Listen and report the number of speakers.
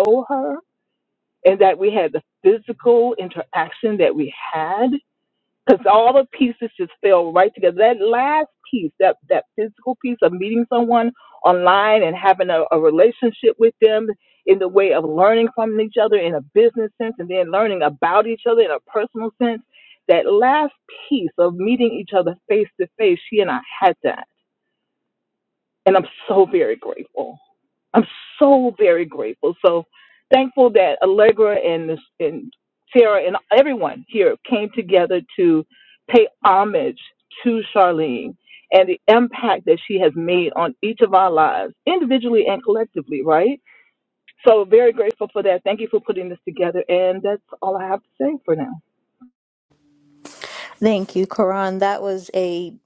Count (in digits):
2